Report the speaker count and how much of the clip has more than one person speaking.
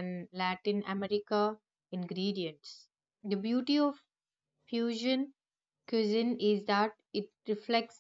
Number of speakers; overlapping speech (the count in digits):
1, no overlap